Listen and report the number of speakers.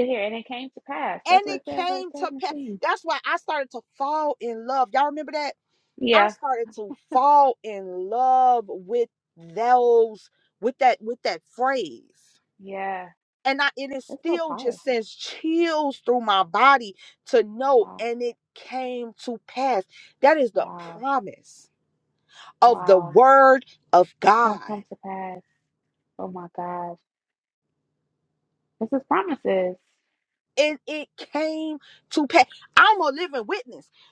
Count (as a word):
two